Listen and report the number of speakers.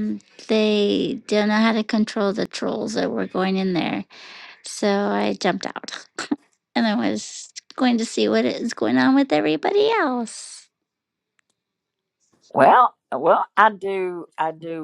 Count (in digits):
2